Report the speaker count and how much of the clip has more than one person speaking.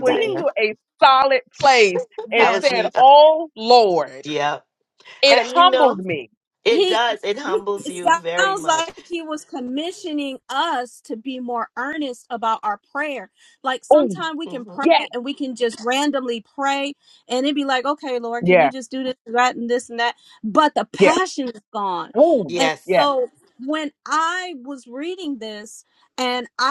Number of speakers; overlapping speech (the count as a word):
three, about 17%